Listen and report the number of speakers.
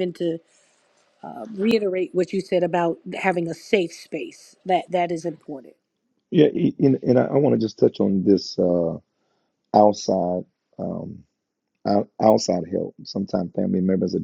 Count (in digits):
2